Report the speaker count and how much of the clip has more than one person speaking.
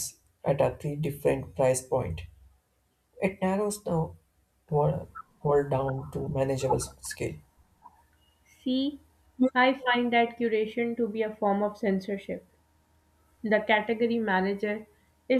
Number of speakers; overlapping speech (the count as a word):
two, no overlap